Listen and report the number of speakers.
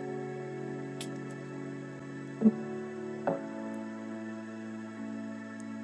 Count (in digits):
0